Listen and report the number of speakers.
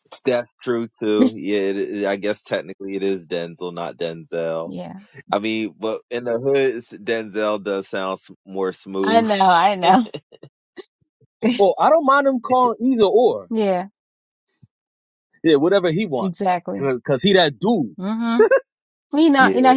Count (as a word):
three